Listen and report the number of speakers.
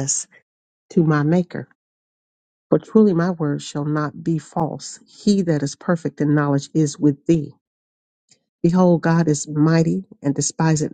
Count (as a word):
one